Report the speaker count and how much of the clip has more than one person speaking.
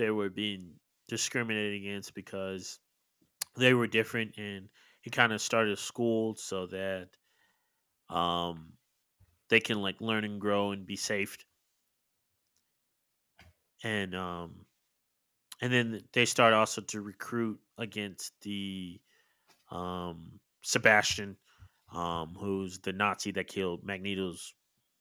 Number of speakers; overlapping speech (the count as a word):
one, no overlap